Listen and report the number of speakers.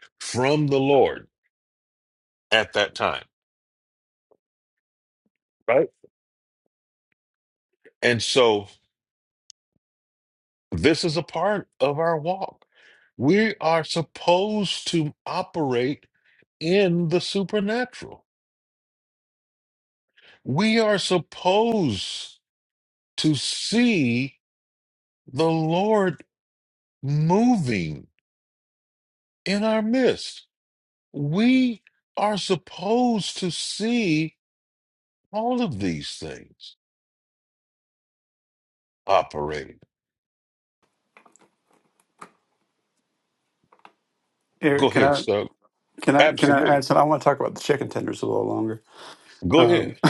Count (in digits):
2